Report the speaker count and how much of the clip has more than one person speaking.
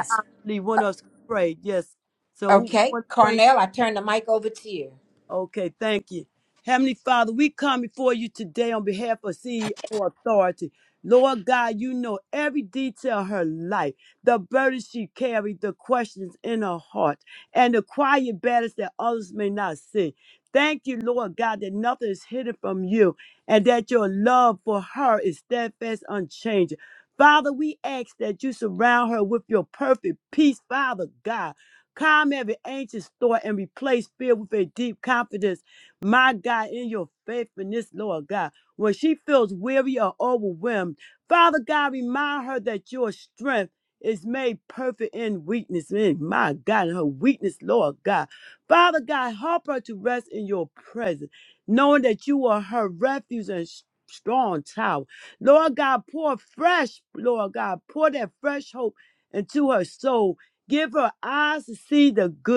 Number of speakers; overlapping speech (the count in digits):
2, about 2%